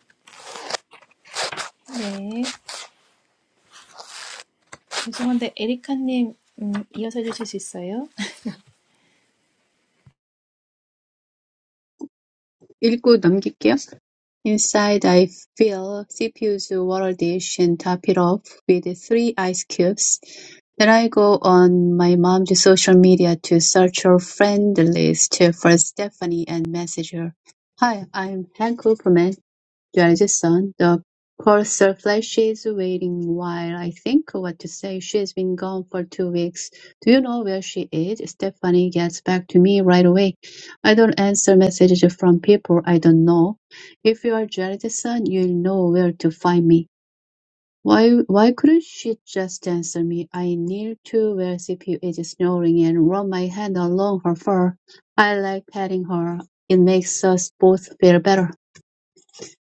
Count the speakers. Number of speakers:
2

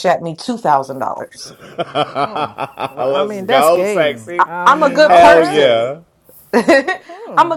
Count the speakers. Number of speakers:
3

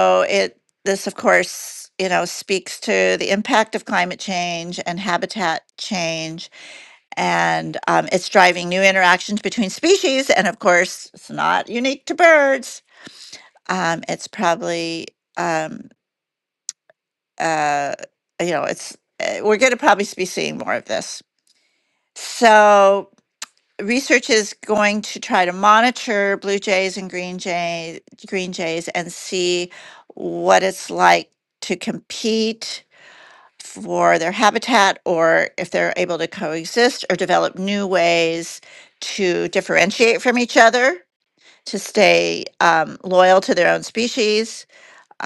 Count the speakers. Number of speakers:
1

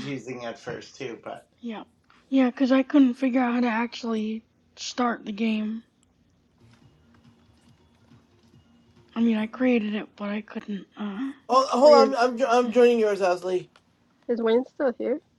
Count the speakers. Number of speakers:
4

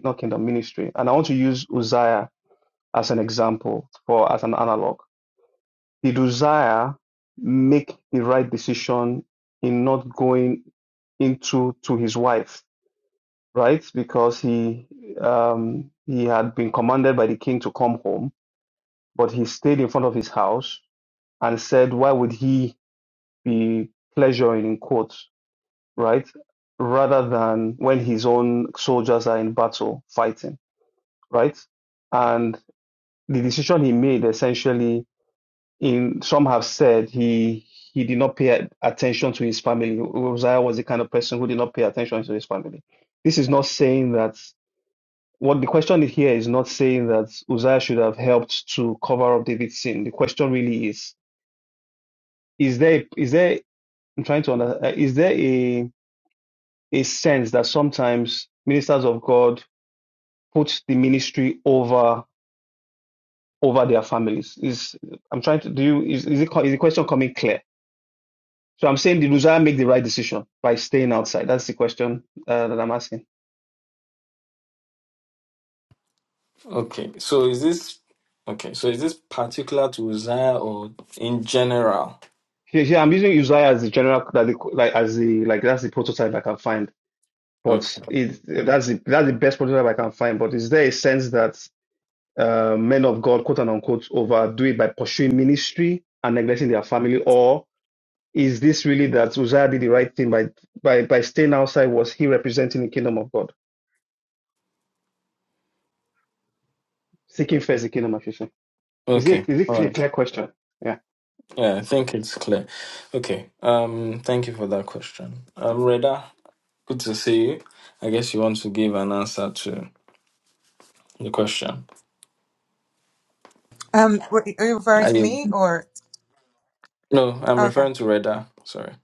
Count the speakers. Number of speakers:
3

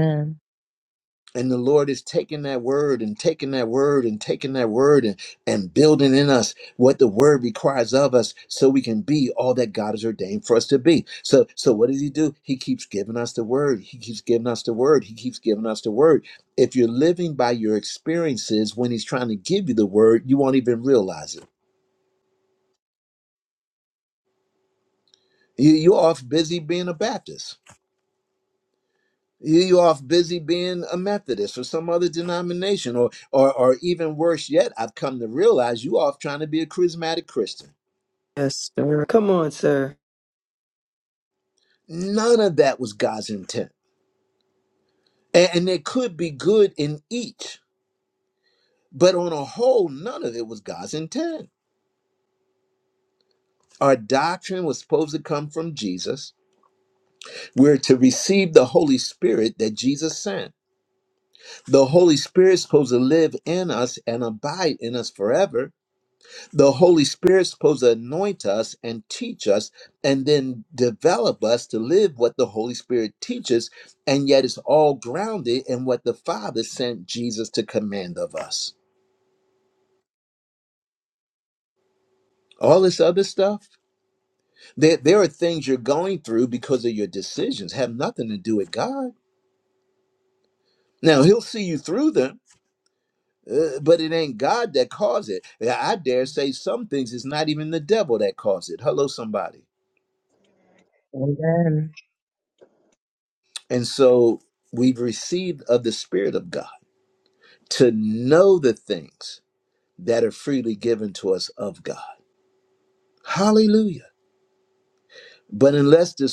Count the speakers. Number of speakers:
3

